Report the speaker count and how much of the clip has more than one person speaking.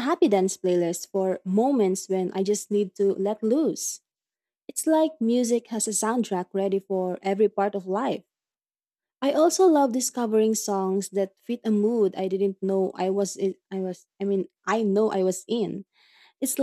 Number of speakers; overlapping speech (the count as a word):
one, no overlap